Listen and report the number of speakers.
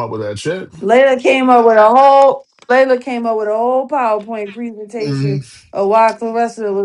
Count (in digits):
2